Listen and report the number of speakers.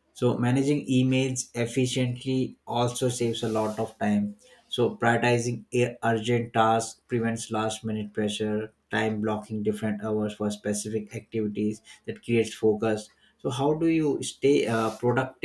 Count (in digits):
1